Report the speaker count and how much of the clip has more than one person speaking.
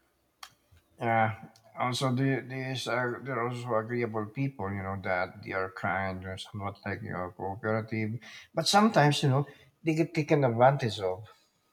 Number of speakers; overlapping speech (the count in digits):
1, no overlap